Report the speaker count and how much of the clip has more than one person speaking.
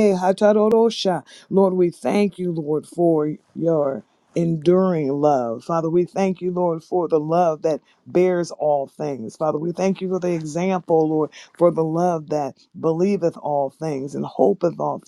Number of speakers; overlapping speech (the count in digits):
1, no overlap